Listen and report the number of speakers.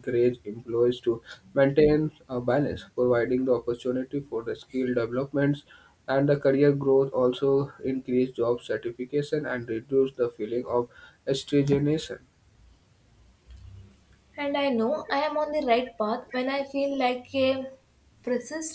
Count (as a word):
two